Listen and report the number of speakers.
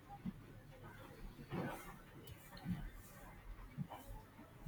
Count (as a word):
zero